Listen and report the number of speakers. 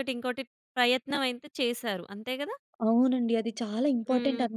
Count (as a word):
two